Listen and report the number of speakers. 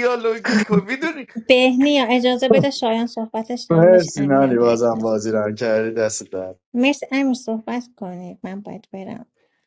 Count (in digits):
3